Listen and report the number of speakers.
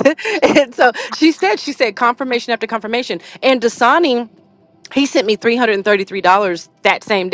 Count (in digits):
1